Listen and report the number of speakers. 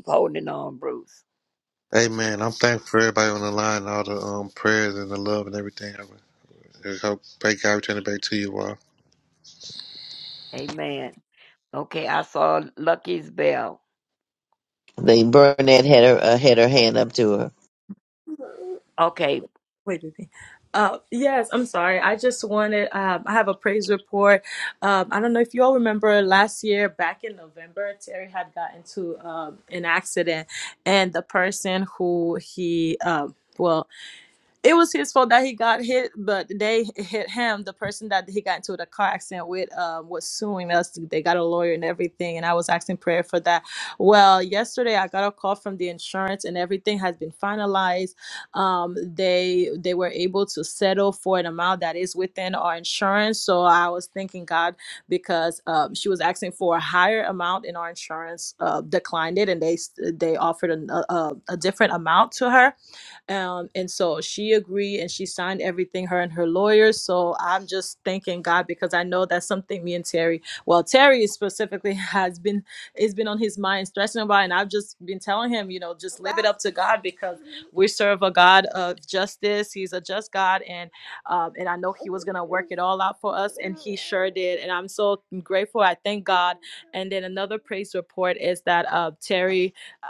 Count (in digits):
4